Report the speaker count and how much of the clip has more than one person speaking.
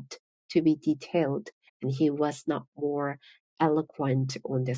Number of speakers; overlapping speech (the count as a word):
one, no overlap